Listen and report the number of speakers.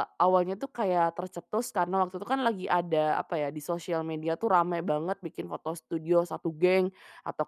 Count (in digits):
1